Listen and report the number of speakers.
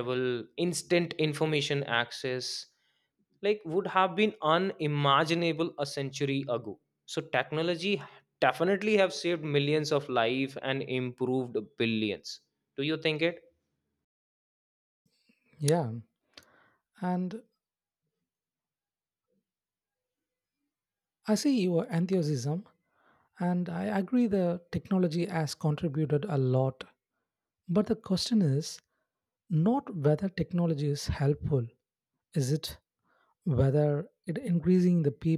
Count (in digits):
2